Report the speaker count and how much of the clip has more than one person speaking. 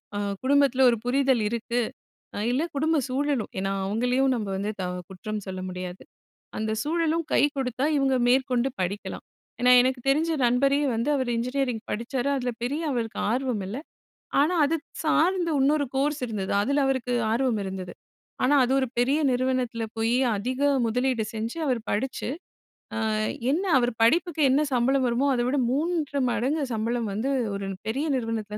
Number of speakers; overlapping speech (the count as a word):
one, no overlap